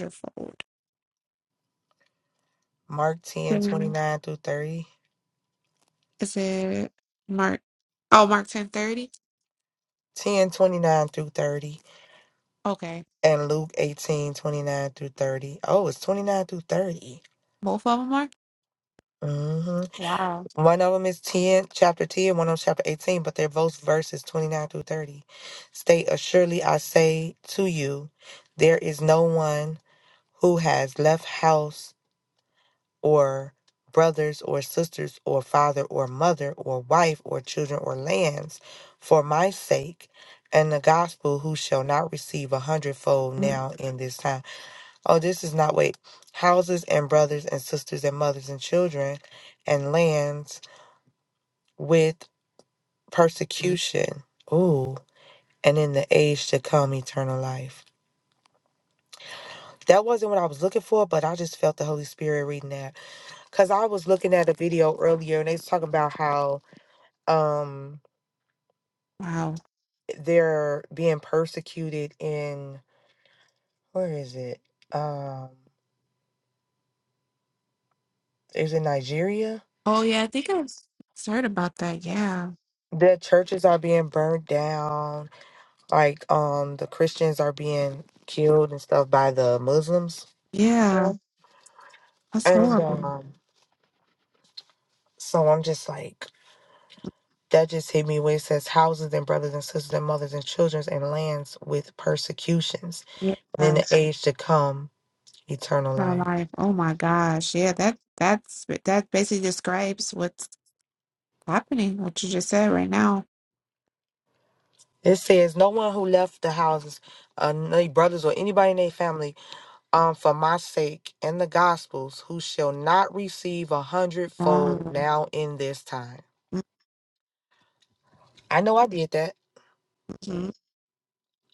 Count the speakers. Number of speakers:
two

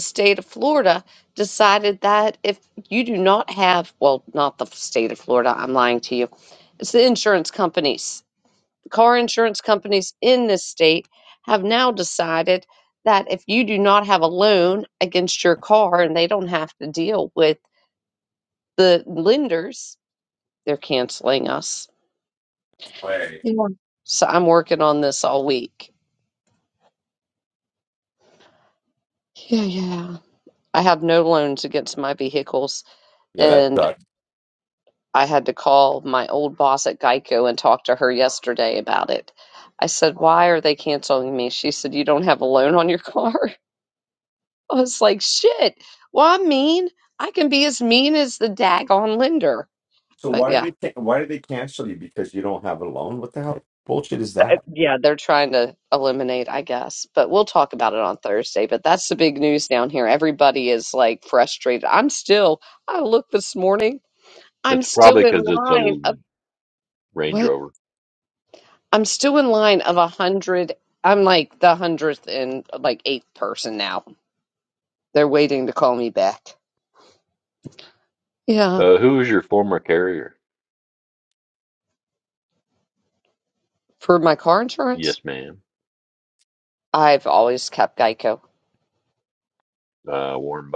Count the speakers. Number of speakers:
three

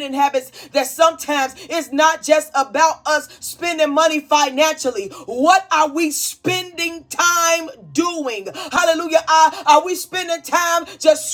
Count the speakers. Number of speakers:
one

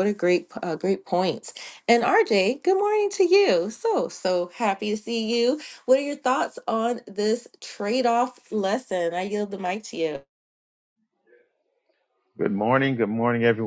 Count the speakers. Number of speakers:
two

